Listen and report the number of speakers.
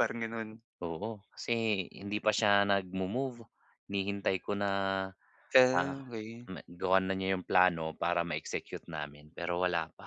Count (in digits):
2